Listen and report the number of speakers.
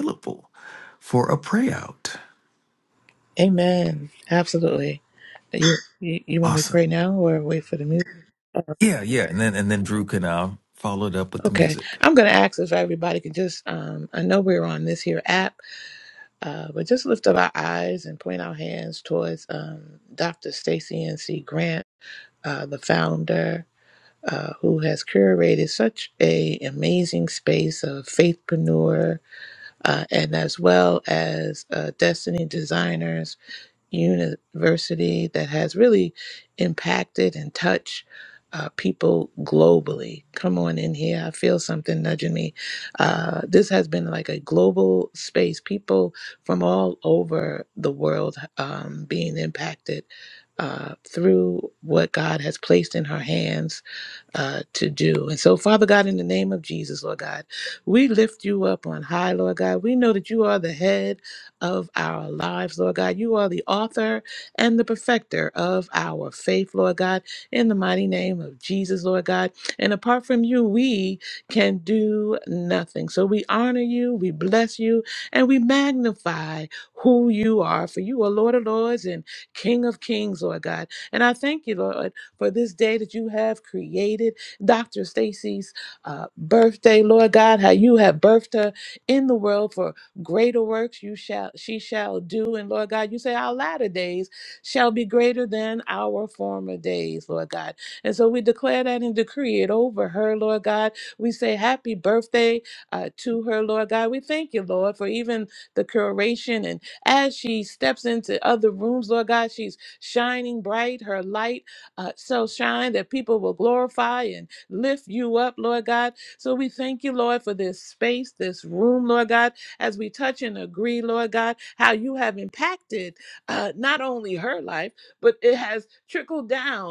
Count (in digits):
2